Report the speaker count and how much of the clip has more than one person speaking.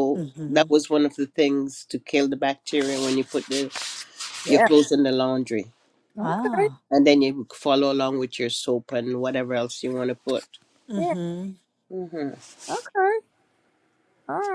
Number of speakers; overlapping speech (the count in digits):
3, about 10%